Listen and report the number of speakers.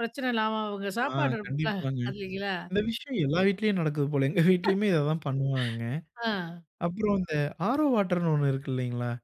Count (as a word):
two